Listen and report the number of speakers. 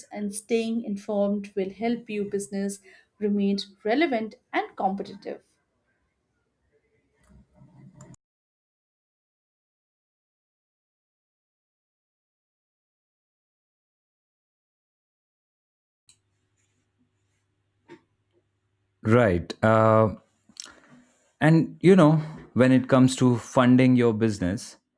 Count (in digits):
2